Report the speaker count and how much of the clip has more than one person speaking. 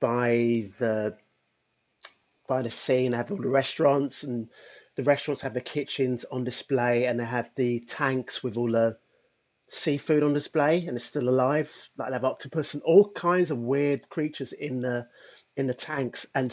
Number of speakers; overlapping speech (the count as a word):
one, no overlap